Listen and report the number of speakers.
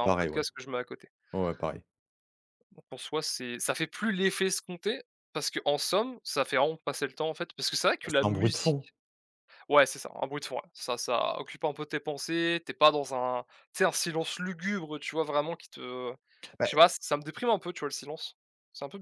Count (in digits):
2